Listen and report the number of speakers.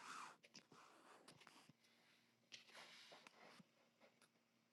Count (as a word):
zero